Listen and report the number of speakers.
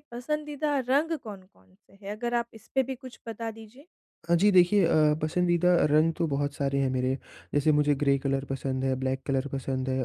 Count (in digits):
2